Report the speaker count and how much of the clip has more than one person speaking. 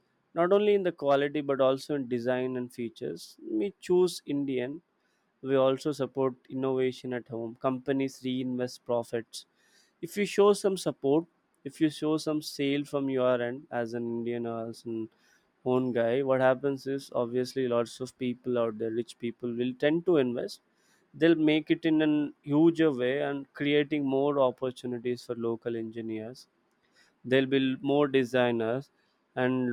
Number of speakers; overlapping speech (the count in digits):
1, no overlap